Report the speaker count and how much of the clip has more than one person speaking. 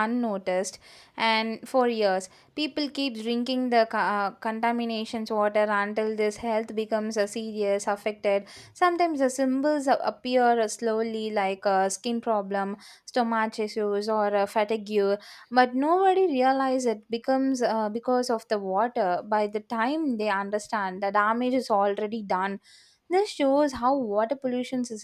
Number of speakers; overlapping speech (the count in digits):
1, no overlap